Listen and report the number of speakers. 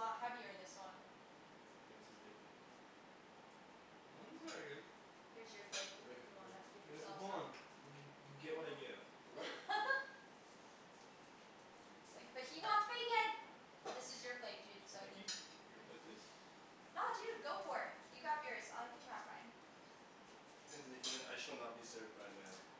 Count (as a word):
three